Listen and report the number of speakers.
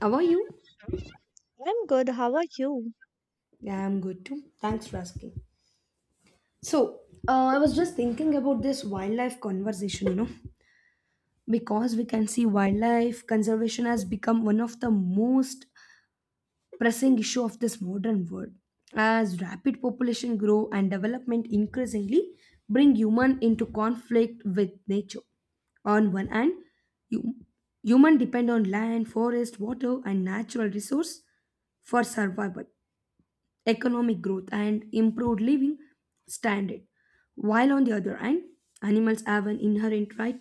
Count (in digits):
2